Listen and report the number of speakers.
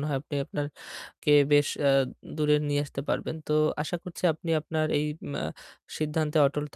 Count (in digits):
1